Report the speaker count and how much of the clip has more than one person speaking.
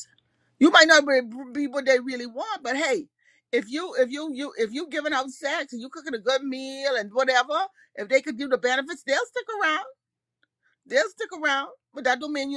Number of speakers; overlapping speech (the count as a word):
one, no overlap